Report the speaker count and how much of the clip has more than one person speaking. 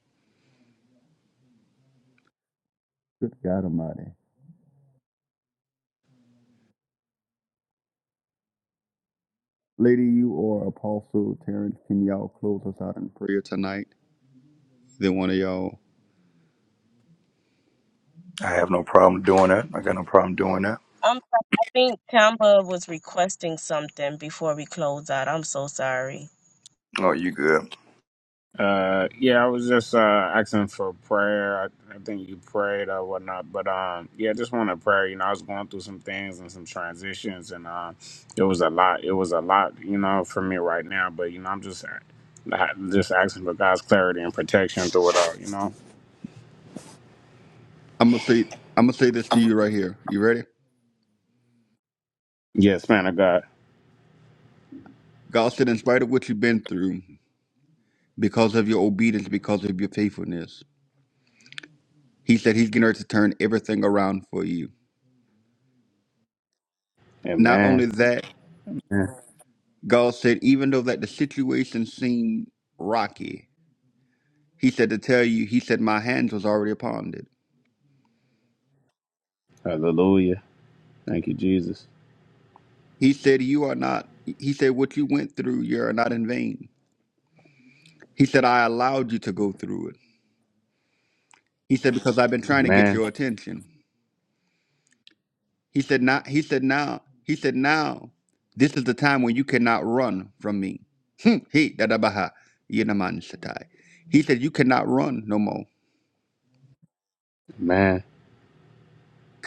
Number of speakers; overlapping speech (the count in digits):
4, about 1%